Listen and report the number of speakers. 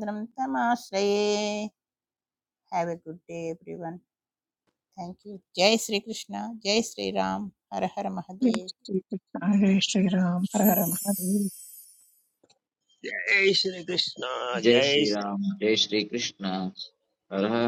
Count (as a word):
four